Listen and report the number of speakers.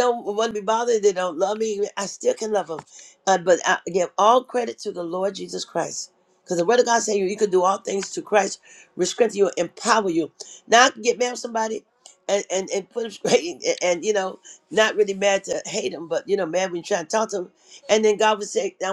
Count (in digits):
1